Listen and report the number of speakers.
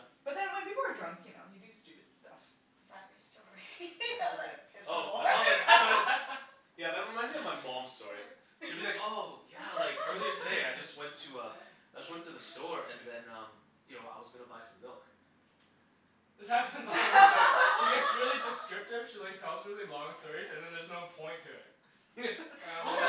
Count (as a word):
four